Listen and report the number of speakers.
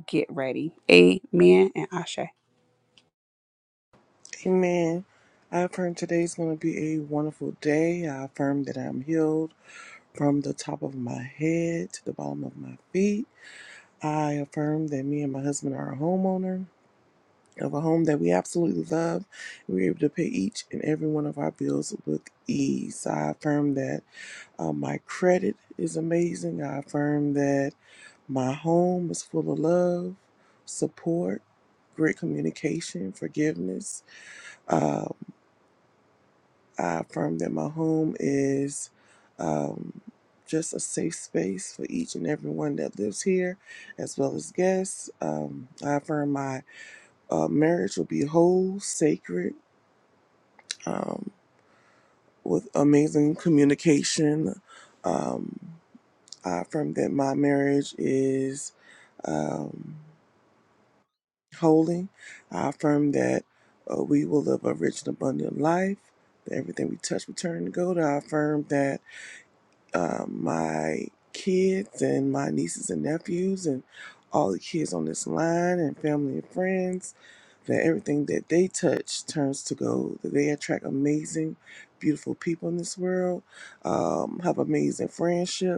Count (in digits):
2